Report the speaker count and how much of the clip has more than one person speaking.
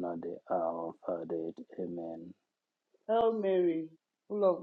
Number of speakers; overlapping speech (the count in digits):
2, no overlap